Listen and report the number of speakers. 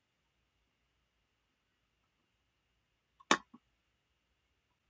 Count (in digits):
0